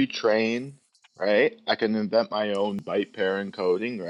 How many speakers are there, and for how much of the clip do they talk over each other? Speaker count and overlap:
1, no overlap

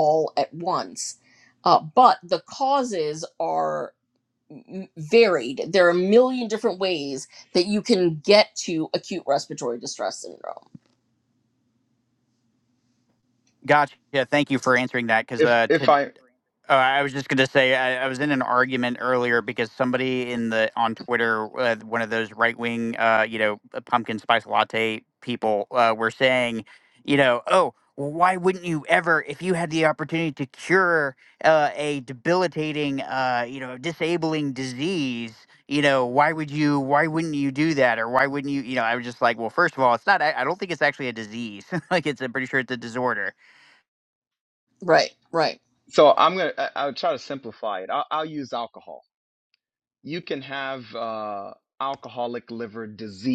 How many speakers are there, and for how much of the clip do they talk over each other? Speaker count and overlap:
3, about 1%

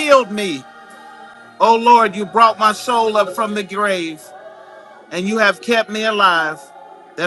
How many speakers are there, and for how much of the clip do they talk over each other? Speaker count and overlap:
1, no overlap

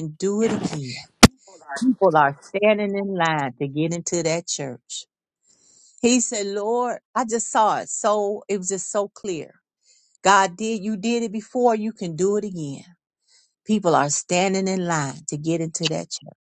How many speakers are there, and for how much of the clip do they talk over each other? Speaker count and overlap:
1, no overlap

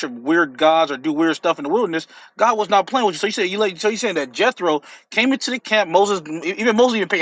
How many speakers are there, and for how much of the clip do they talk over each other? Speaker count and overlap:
1, no overlap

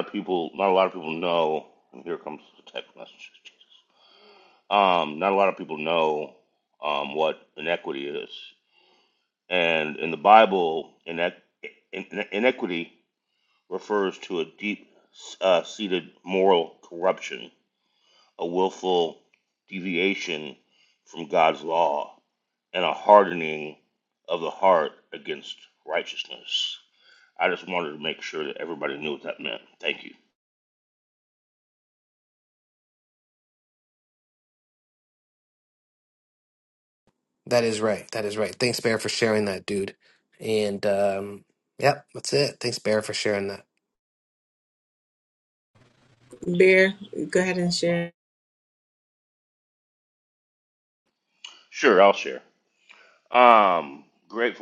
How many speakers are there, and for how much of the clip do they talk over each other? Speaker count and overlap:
3, no overlap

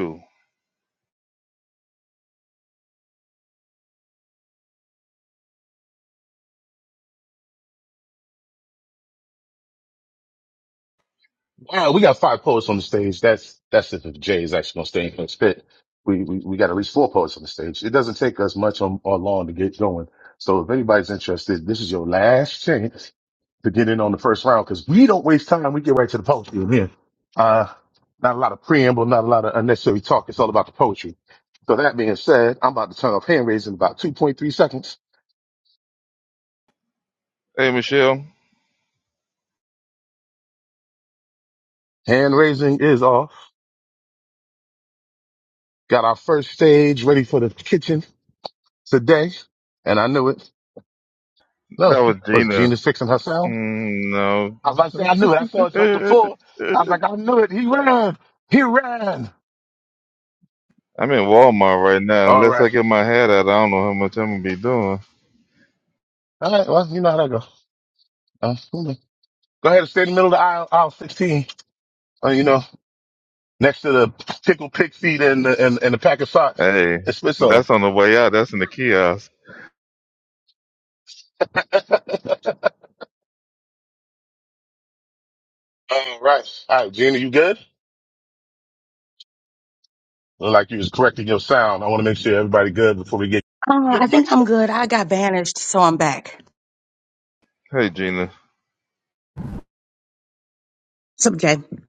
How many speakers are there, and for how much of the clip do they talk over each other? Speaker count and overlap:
3, about 2%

